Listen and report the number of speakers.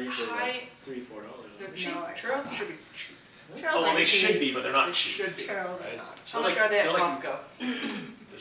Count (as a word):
four